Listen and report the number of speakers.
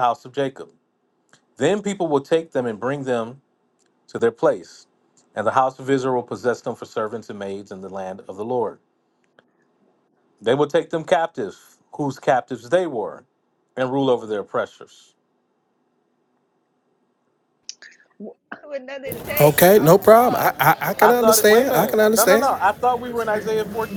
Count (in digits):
3